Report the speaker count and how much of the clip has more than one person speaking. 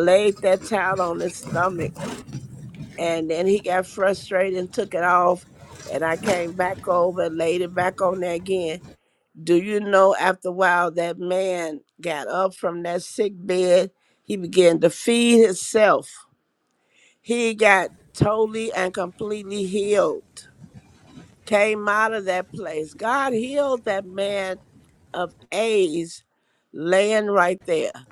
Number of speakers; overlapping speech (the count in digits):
1, no overlap